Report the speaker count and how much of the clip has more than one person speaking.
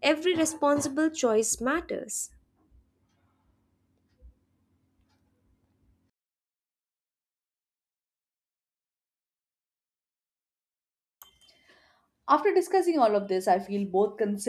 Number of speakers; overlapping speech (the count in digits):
2, no overlap